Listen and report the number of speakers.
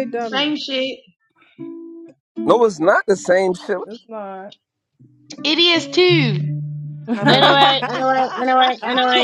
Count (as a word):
four